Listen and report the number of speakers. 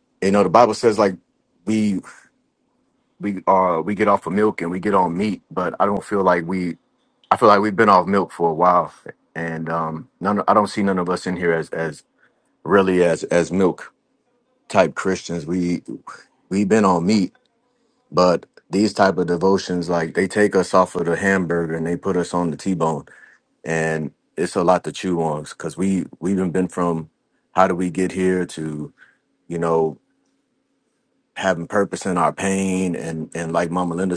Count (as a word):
one